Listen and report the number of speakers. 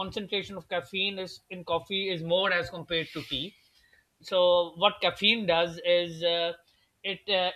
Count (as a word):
one